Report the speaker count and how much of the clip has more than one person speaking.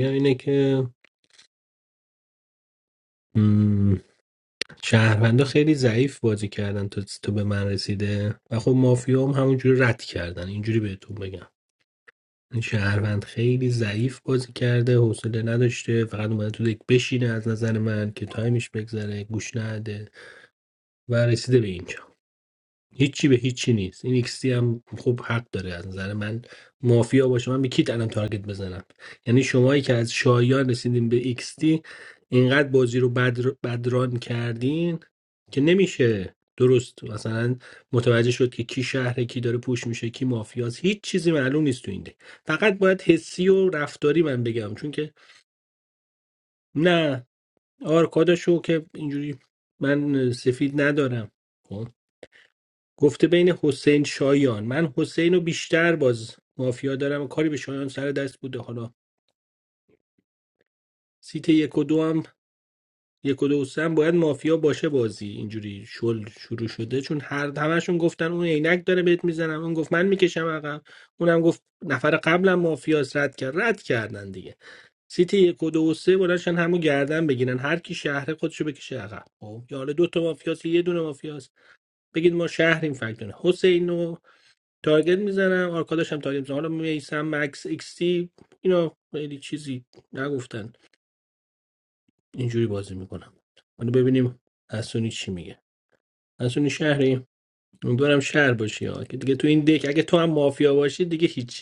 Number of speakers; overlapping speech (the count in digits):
1, no overlap